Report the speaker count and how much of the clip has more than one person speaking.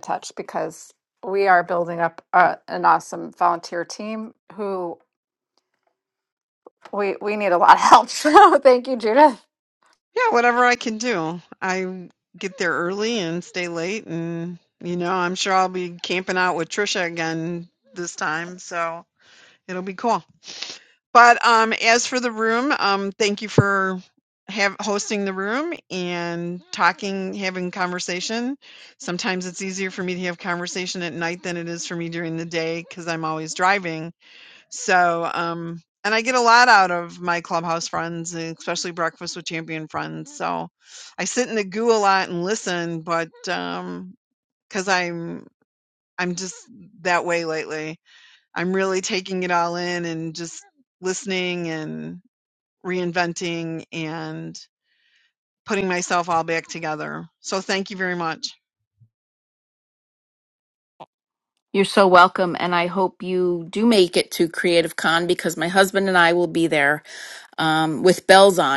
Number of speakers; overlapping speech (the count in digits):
3, no overlap